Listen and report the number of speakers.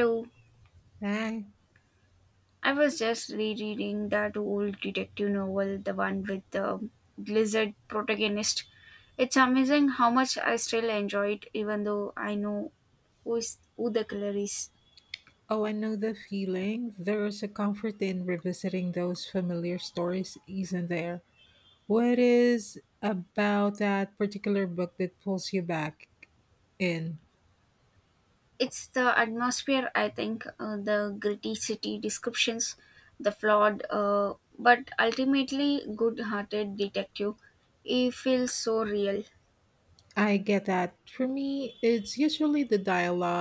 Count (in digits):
2